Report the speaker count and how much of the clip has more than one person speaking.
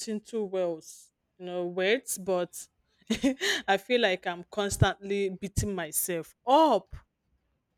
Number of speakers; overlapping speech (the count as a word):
one, no overlap